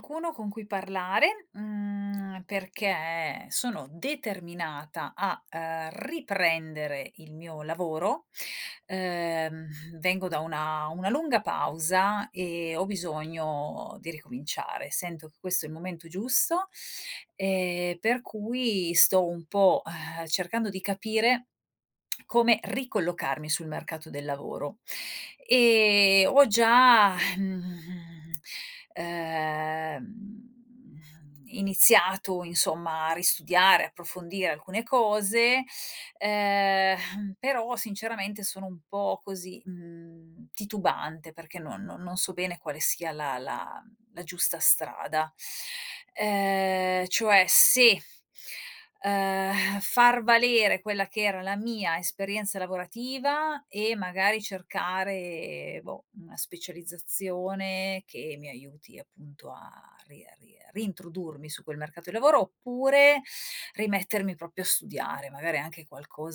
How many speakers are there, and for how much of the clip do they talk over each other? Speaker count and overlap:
1, no overlap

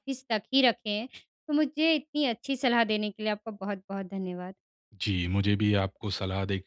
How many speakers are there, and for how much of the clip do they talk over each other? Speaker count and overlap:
2, no overlap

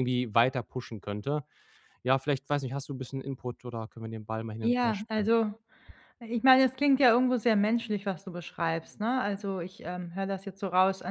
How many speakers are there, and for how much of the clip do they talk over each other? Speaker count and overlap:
2, about 6%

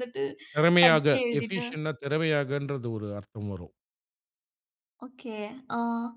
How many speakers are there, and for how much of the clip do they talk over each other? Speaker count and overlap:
2, about 14%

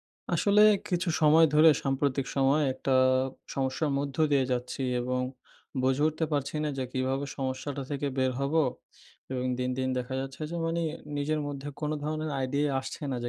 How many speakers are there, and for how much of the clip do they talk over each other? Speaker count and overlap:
1, no overlap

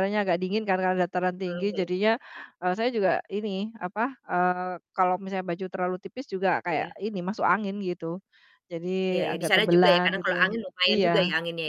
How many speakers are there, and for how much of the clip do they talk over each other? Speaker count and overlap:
2, about 19%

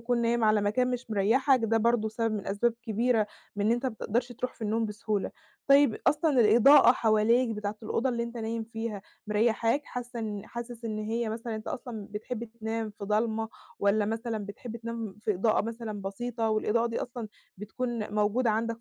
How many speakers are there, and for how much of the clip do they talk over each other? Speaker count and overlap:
1, no overlap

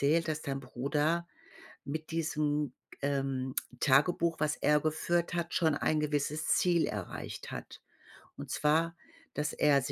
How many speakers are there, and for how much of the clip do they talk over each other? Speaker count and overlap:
1, no overlap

